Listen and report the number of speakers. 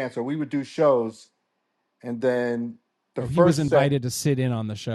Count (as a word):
two